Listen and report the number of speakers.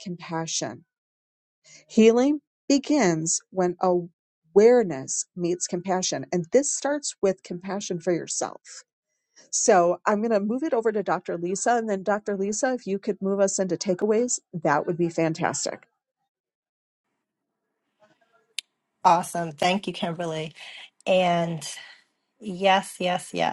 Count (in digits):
2